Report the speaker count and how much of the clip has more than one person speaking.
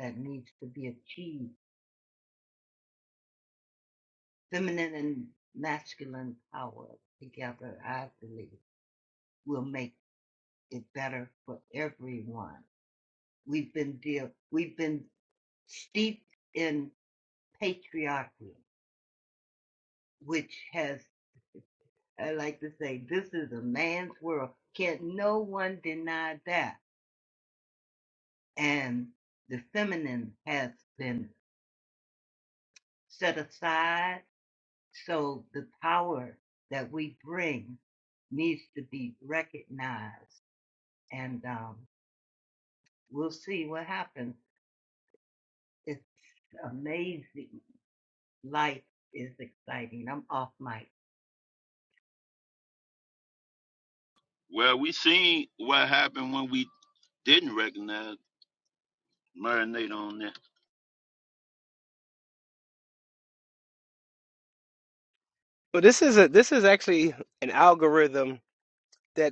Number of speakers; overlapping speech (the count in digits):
3, no overlap